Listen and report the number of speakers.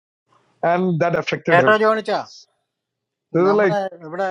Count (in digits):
2